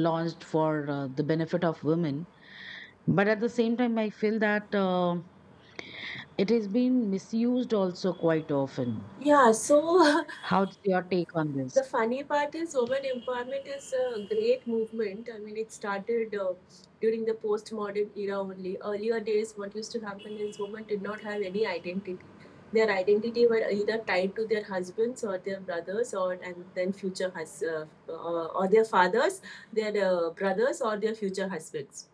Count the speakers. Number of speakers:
two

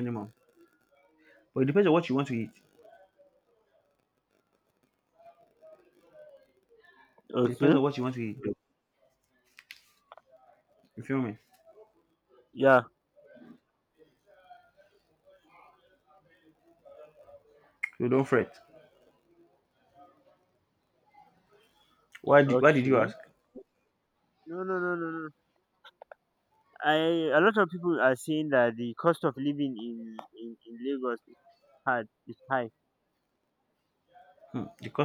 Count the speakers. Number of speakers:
two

